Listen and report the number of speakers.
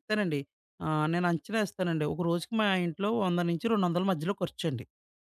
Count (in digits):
1